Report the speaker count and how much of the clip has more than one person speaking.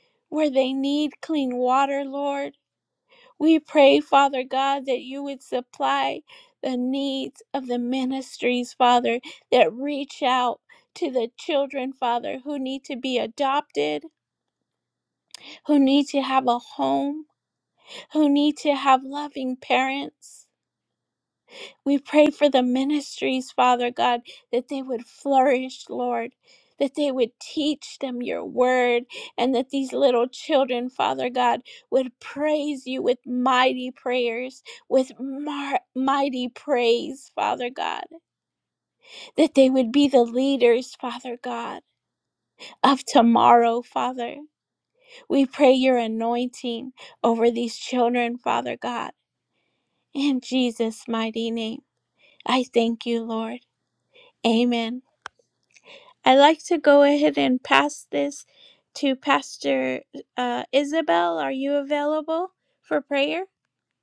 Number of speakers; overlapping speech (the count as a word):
one, no overlap